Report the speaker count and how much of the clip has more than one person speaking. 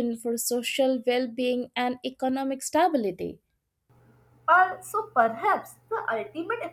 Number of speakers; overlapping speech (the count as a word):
two, no overlap